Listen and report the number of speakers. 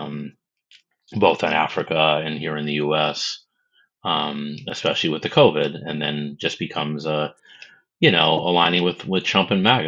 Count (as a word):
one